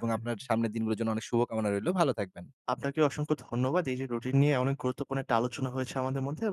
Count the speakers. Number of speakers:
2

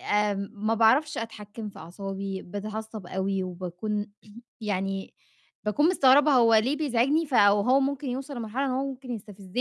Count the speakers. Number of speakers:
1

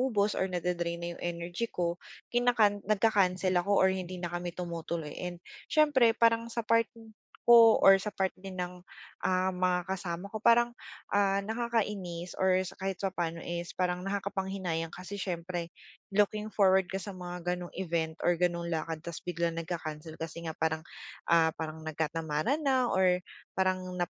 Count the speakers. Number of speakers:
1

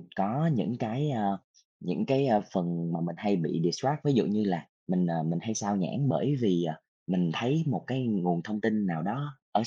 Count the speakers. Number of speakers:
1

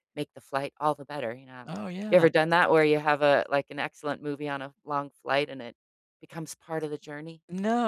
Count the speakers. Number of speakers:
2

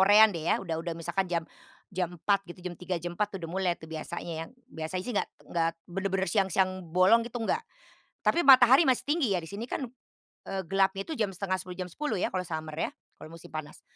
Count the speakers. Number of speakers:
1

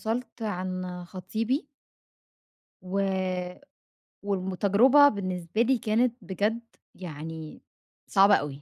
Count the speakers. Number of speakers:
1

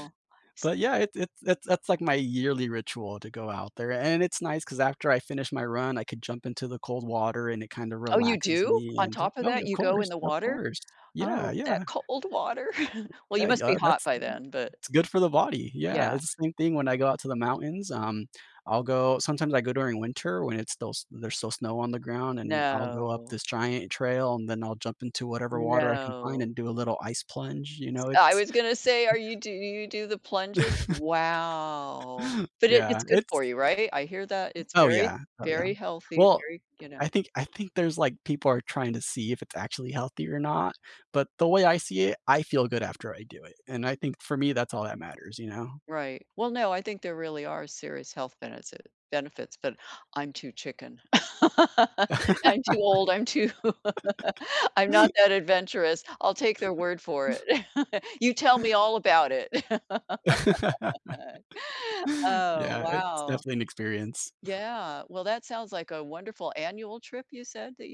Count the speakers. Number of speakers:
2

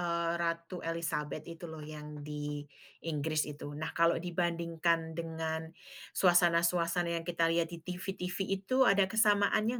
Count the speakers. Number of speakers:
1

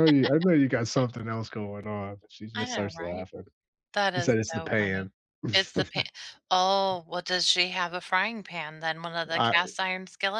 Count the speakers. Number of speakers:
2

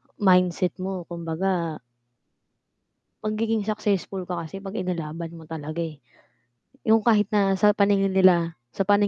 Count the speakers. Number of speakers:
1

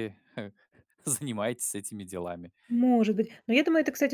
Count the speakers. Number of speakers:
2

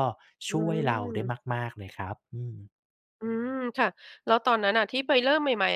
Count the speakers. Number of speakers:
2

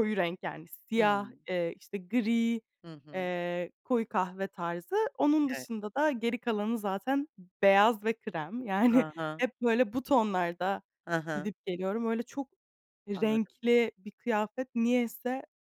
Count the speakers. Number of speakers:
2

